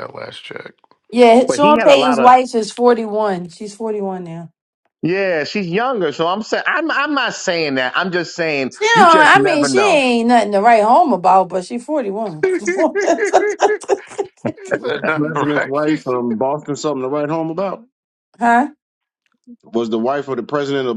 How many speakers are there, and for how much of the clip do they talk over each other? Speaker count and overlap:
4, about 12%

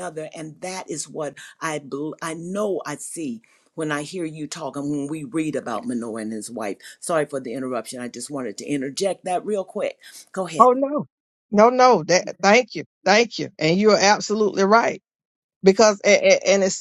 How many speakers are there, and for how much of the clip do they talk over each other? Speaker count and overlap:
2, about 1%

